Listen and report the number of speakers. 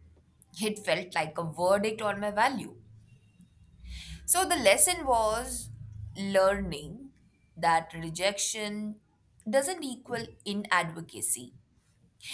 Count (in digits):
1